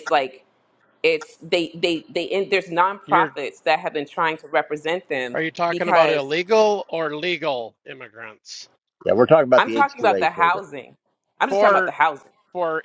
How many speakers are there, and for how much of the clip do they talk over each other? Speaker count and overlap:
three, about 18%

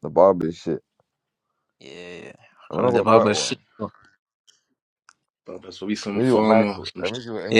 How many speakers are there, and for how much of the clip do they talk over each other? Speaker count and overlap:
three, about 24%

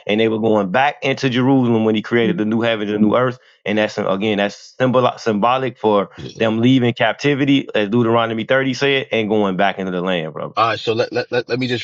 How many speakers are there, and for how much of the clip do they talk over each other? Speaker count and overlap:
two, under 1%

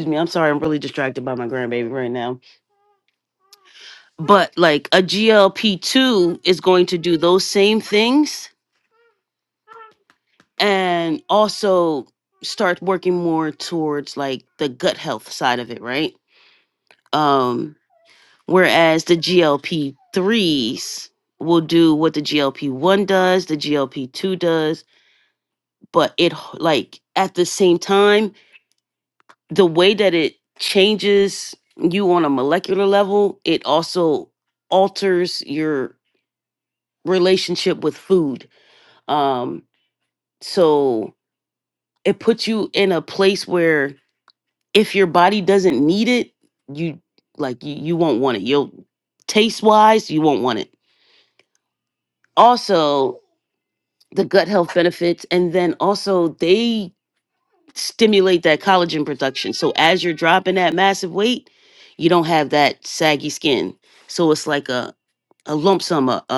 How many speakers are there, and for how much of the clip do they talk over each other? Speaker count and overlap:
one, no overlap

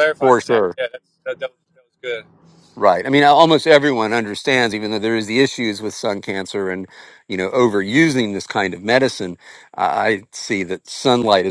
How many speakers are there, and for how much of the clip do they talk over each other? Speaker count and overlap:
two, about 5%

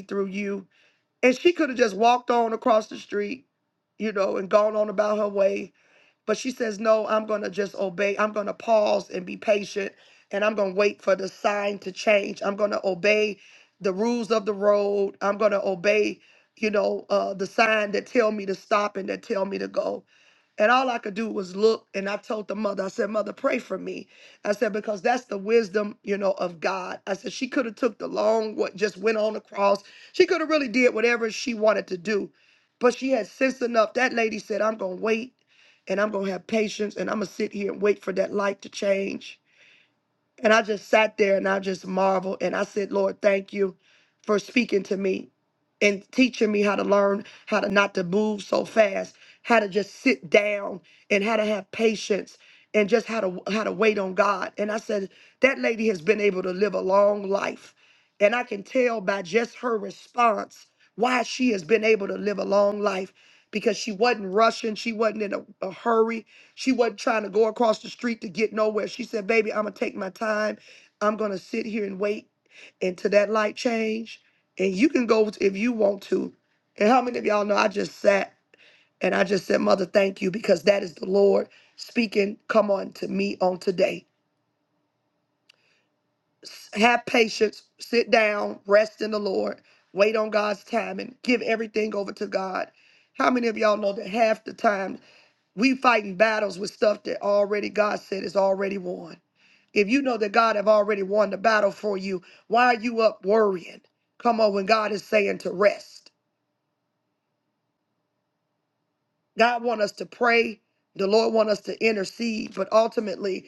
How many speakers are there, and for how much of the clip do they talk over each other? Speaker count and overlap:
one, no overlap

